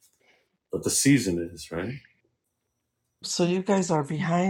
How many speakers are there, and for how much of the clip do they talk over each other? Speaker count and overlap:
two, no overlap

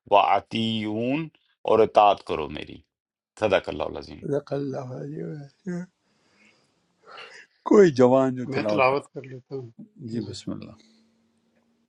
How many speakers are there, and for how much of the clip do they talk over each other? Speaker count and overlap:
three, about 5%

